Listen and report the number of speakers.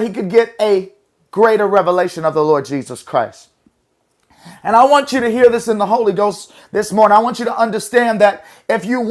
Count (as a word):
one